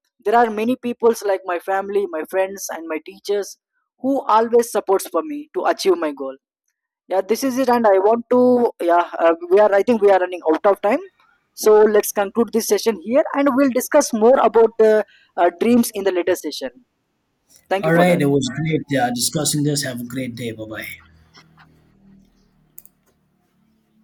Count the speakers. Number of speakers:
2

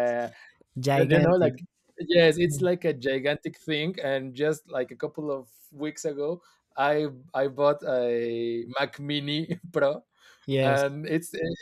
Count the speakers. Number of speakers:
2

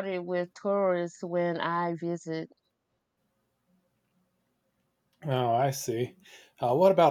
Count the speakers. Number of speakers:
2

